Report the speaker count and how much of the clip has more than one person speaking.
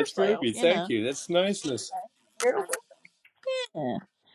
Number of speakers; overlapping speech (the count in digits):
2, about 21%